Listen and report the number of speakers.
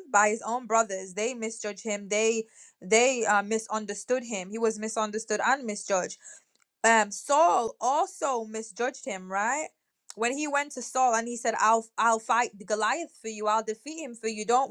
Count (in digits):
1